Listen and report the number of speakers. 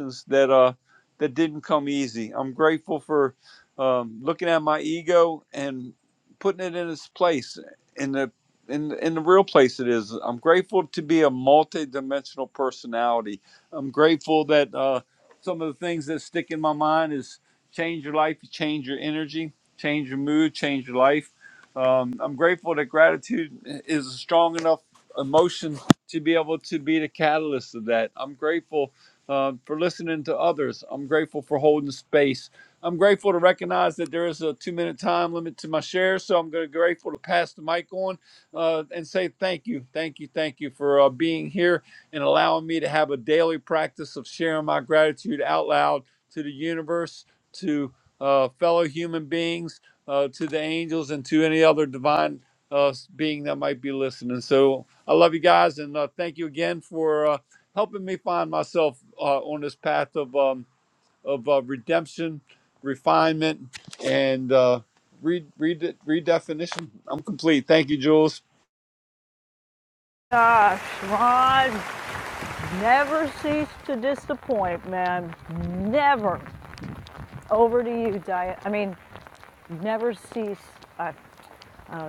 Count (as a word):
two